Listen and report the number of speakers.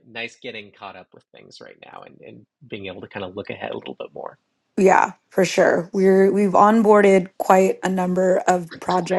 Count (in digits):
2